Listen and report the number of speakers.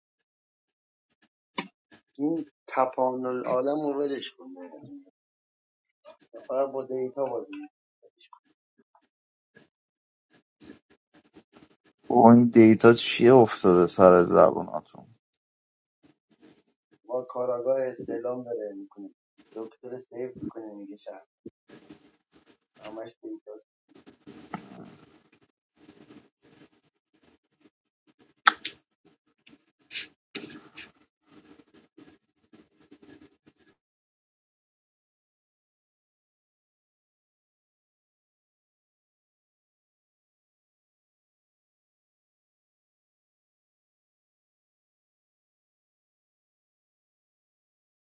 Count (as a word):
two